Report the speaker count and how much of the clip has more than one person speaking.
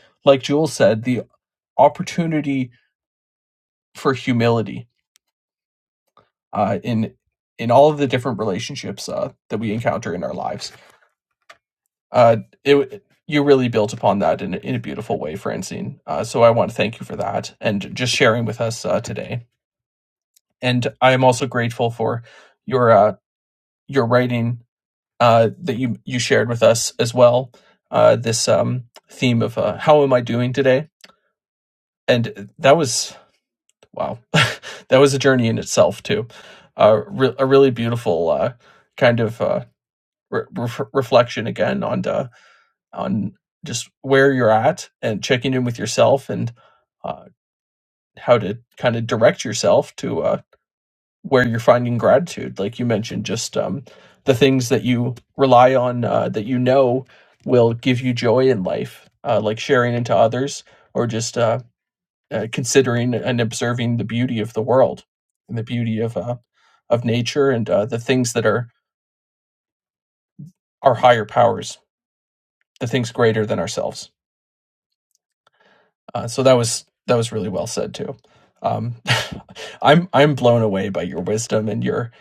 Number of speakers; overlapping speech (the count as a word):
one, no overlap